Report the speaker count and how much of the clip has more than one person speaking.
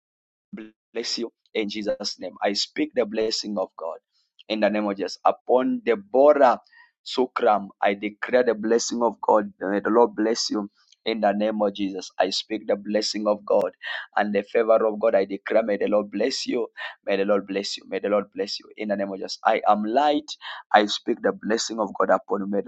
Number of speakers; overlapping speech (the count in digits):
1, no overlap